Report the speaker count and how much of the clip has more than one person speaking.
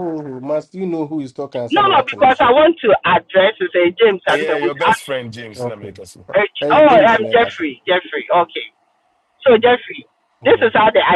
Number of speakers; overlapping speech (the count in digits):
3, about 29%